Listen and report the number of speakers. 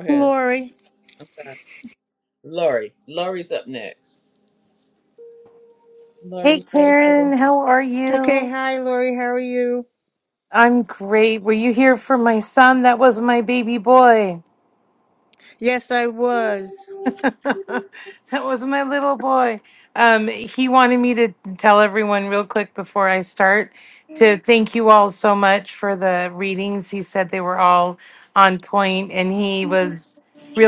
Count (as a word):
three